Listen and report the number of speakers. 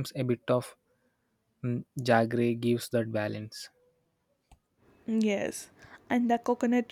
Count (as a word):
two